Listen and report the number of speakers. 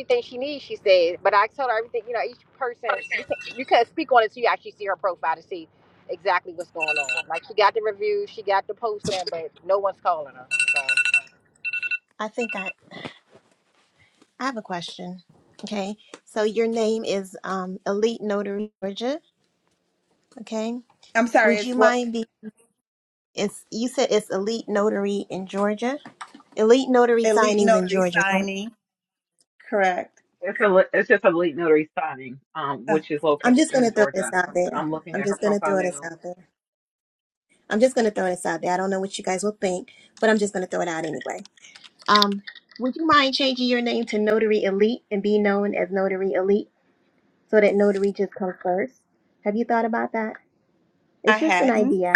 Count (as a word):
four